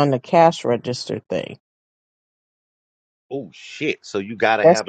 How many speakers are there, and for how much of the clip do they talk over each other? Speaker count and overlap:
2, about 6%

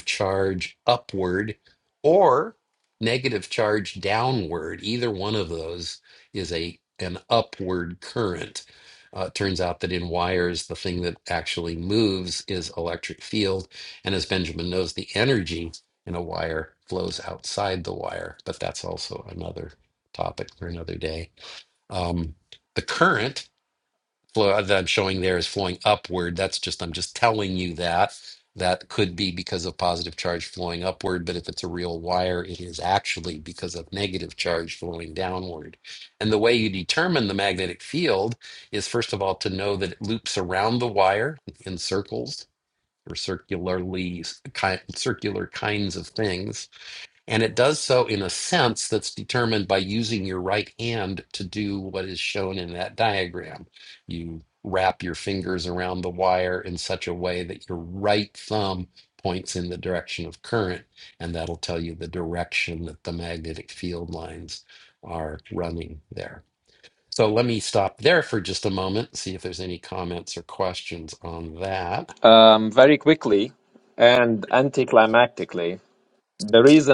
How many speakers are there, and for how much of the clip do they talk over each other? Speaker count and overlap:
2, no overlap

